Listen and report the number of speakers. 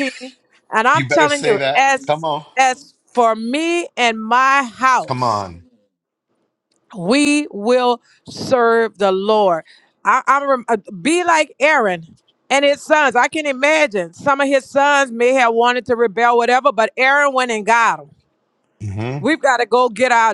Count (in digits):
2